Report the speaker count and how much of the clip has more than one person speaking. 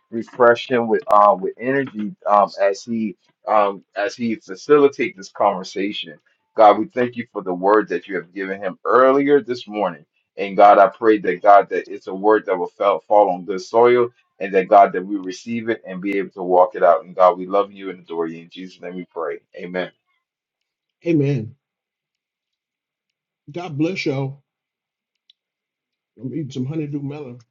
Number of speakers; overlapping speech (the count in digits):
2, no overlap